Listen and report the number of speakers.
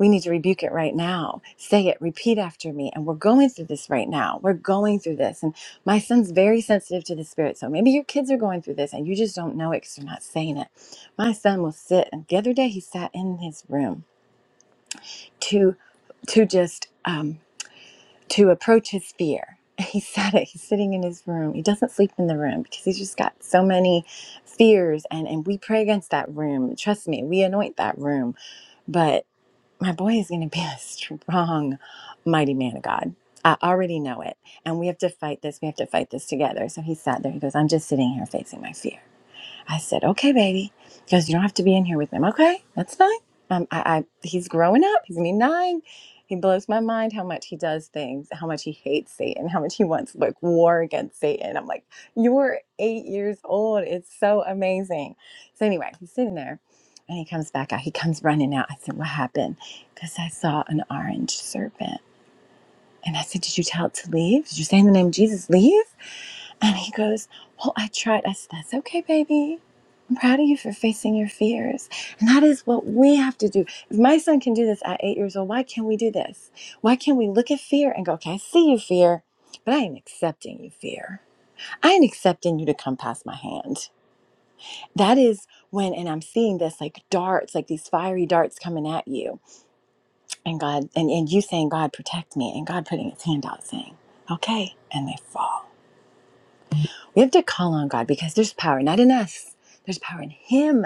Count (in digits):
1